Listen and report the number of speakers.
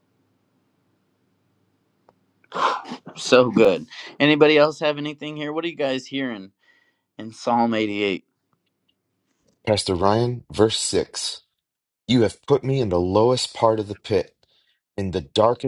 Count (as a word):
two